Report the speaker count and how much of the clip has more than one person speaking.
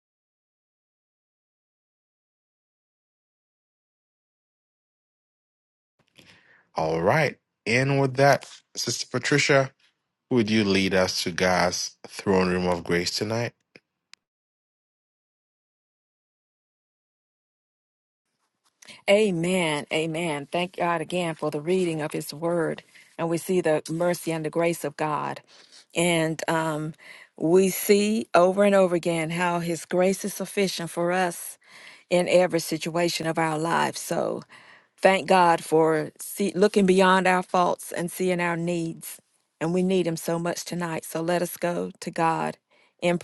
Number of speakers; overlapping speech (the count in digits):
2, no overlap